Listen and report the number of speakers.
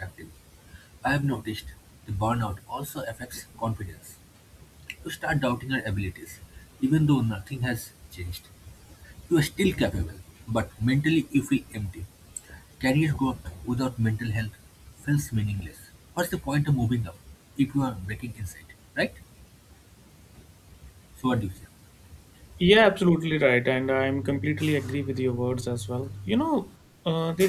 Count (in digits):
2